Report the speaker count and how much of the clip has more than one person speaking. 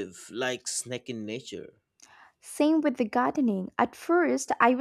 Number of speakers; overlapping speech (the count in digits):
2, no overlap